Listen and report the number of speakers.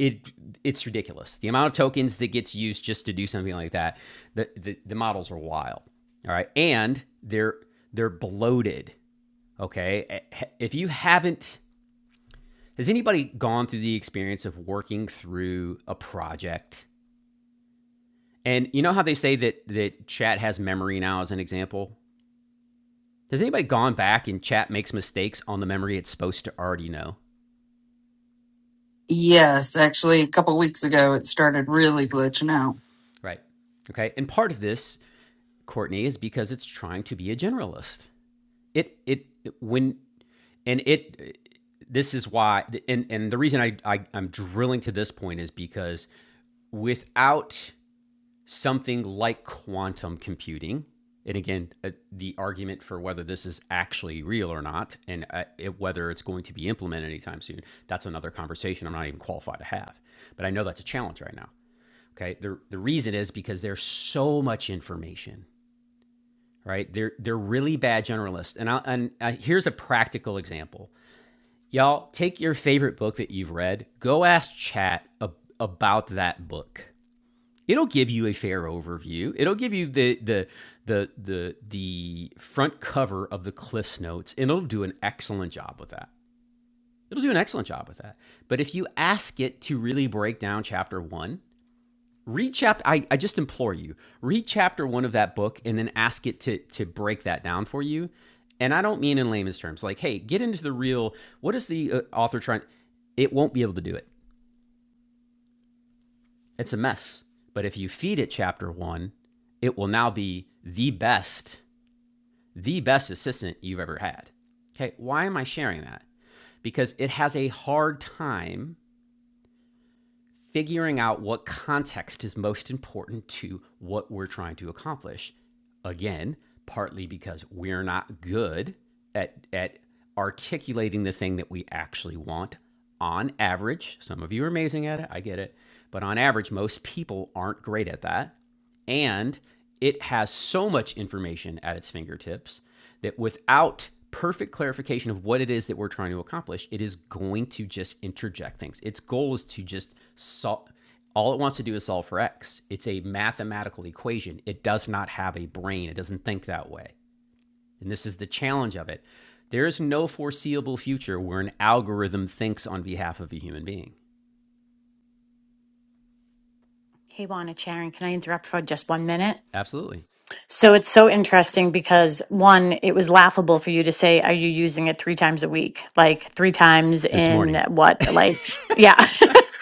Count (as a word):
three